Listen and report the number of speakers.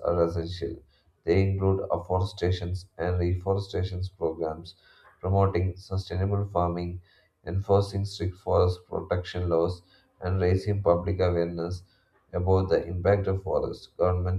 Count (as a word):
one